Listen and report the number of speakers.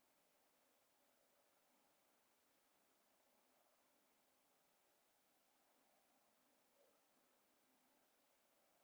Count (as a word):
zero